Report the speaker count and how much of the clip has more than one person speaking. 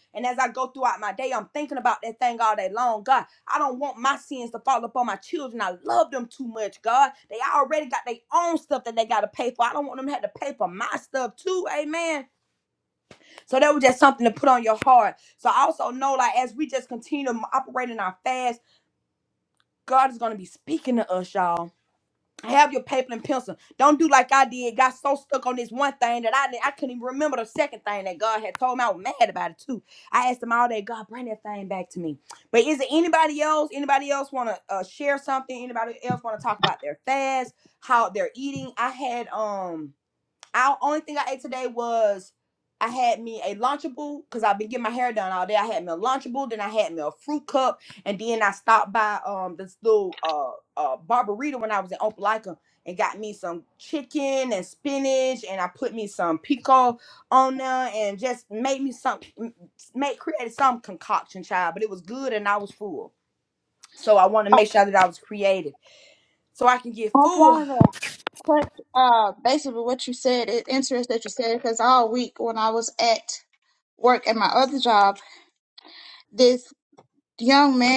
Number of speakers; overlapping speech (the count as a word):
two, about 1%